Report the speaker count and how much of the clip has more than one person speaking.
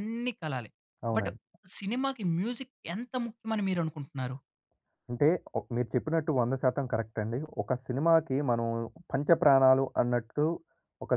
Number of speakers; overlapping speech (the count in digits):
2, about 1%